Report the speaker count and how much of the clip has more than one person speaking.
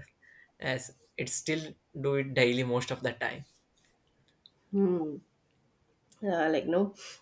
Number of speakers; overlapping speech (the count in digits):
2, no overlap